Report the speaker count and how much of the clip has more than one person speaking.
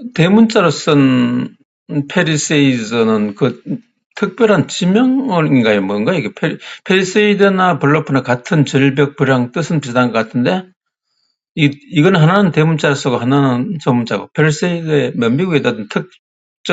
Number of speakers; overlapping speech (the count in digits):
1, no overlap